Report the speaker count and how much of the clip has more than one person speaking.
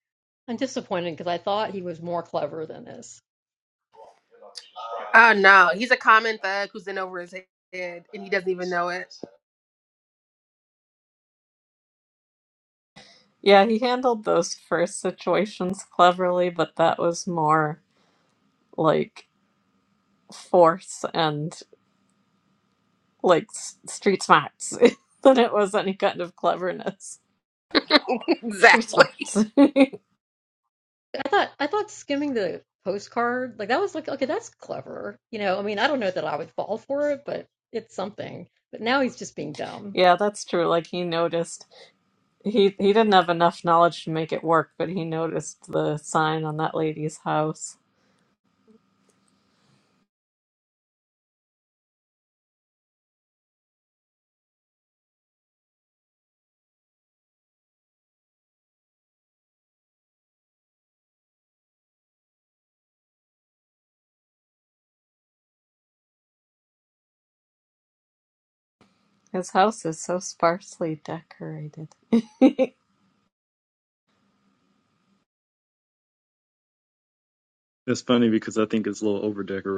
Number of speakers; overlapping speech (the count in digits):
4, under 1%